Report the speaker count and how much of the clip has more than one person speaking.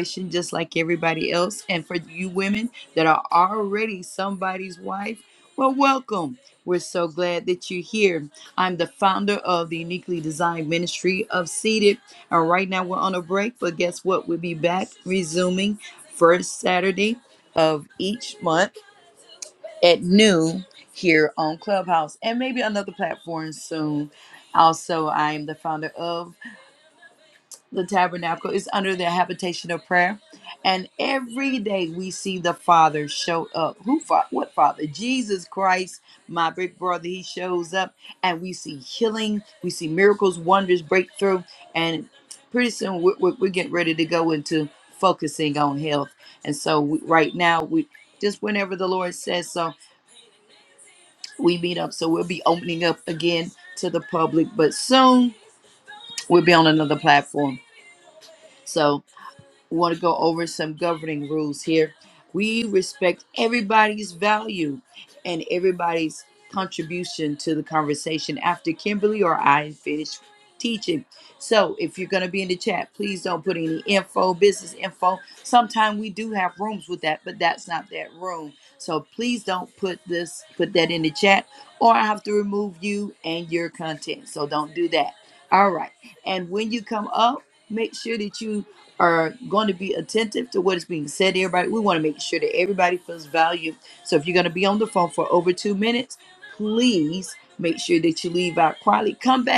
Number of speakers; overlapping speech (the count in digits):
1, no overlap